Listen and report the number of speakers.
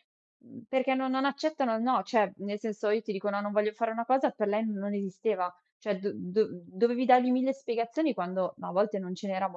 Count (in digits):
1